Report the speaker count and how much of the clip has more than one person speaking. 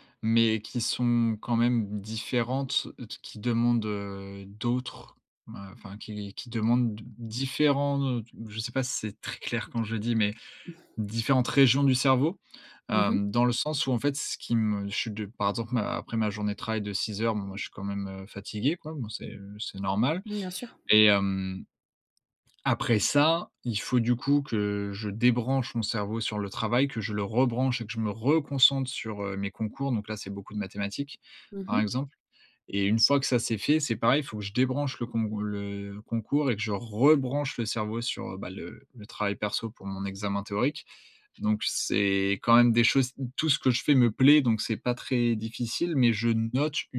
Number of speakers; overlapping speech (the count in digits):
2, about 1%